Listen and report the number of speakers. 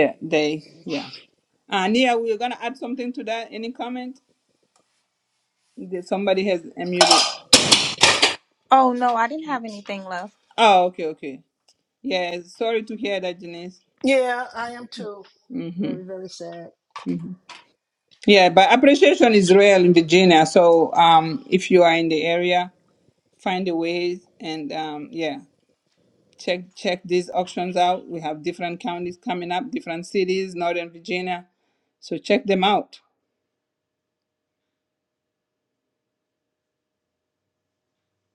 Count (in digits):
3